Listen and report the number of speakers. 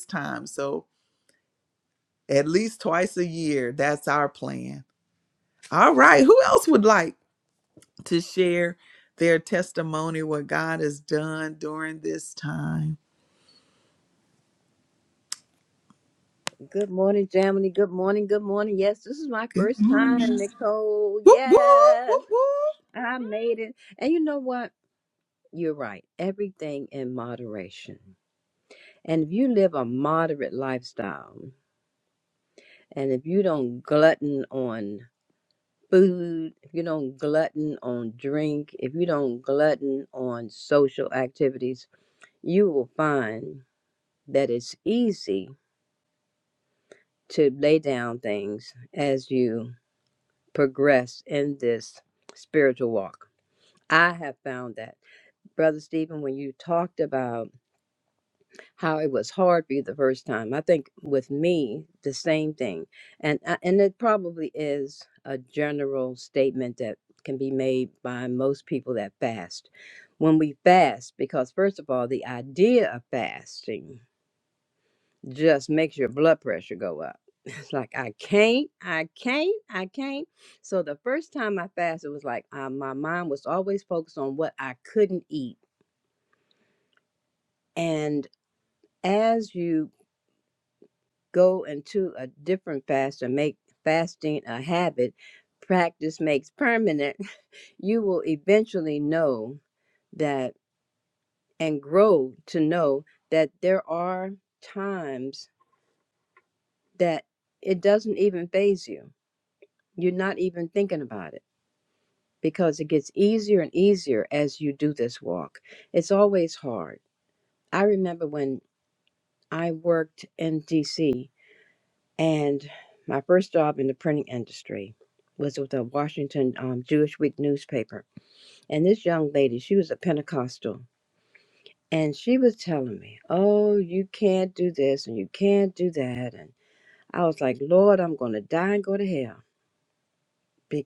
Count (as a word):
two